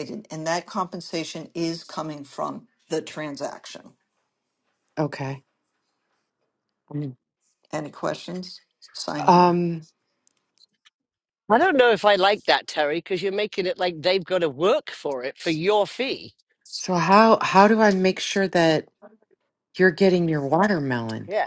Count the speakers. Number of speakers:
3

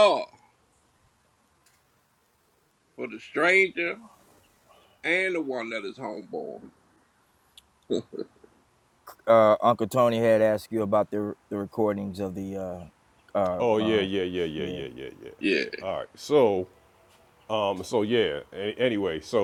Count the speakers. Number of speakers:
3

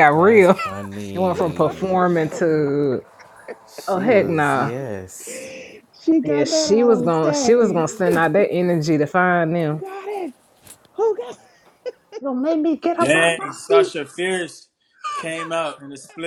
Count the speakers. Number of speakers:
4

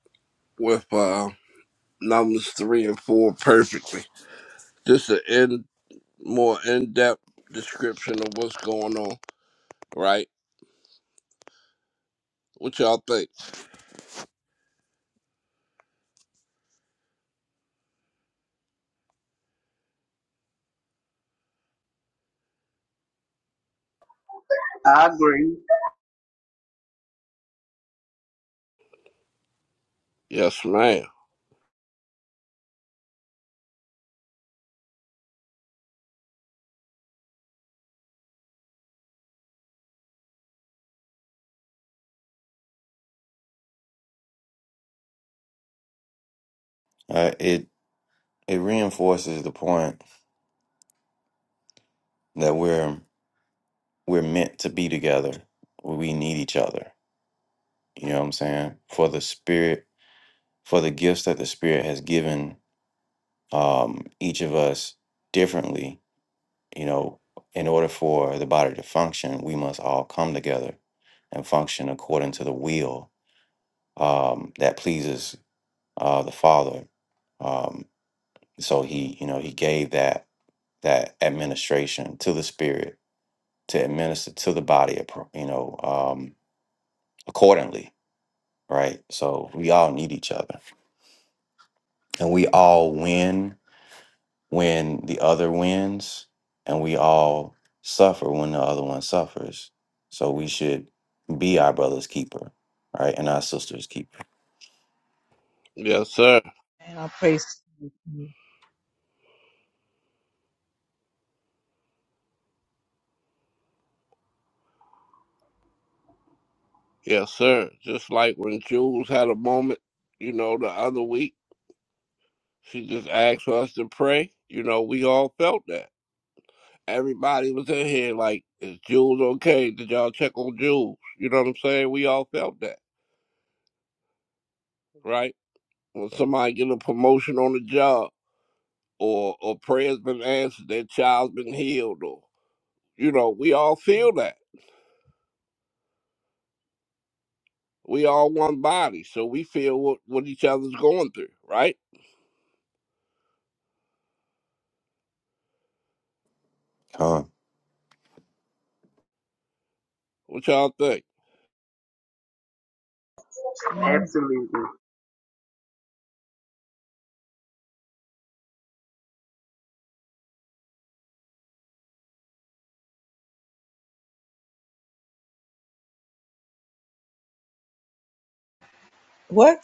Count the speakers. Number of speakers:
4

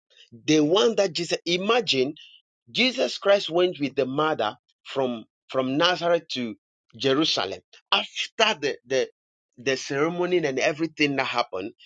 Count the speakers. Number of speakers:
1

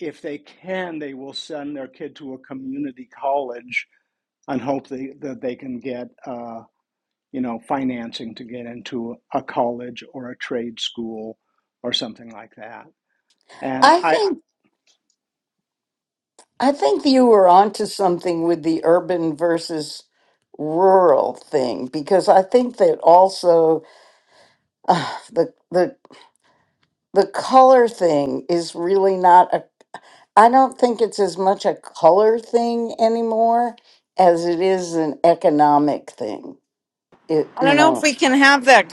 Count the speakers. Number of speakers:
3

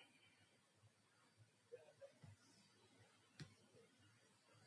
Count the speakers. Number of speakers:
0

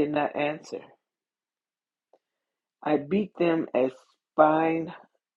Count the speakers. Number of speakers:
1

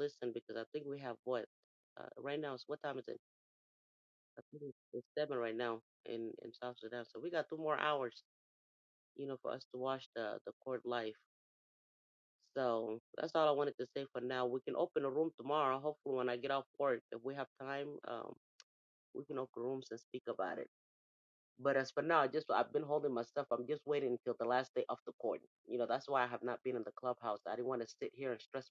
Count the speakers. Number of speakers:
1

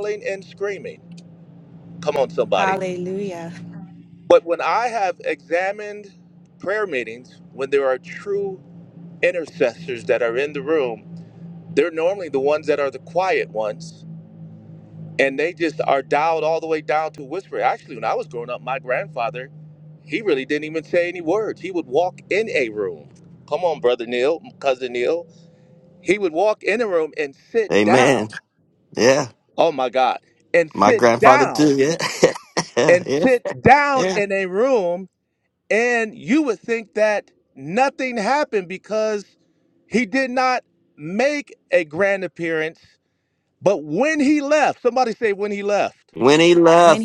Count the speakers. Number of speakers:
3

